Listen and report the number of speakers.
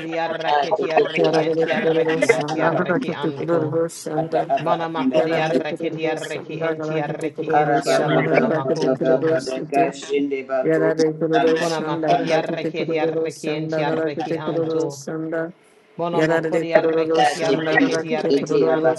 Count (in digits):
3